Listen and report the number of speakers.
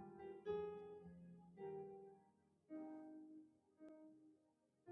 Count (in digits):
0